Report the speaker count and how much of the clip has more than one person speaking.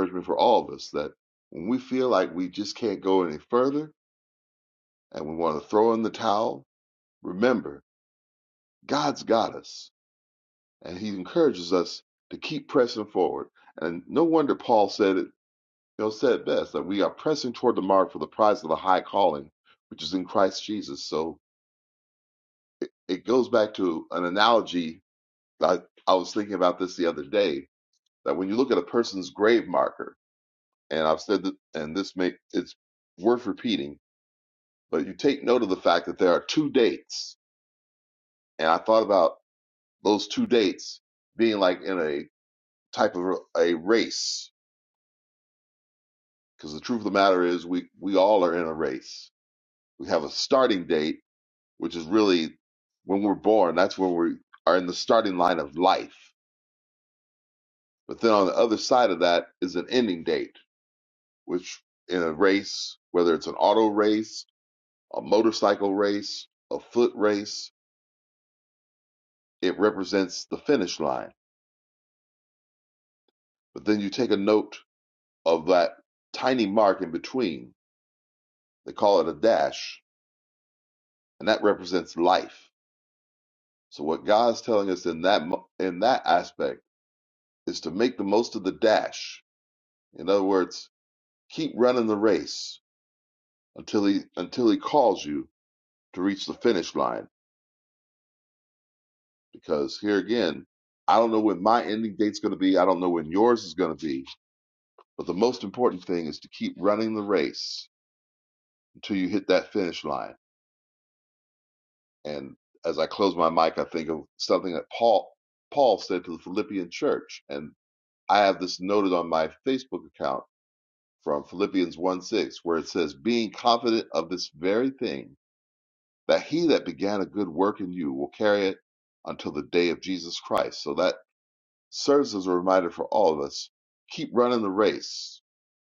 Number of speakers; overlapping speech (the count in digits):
1, no overlap